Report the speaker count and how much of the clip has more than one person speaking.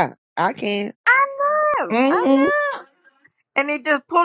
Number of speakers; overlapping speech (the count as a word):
two, about 9%